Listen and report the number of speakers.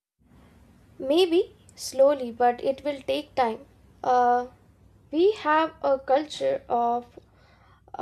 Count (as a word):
one